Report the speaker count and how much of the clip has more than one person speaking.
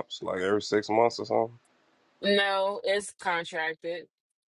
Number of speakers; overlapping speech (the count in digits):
2, no overlap